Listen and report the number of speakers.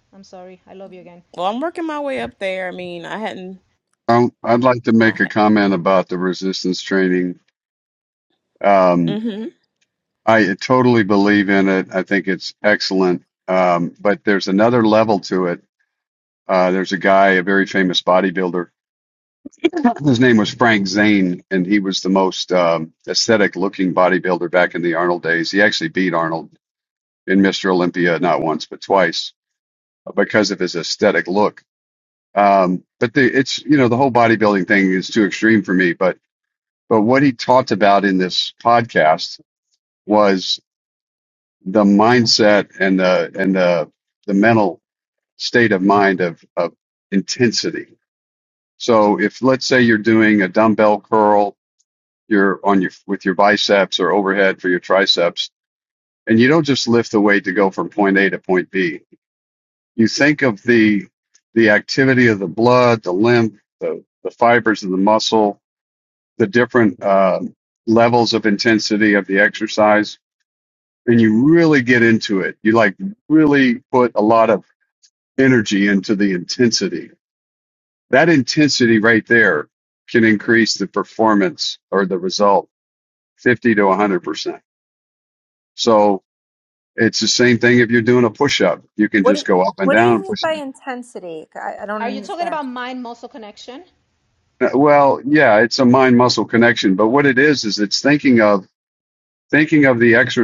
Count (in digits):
4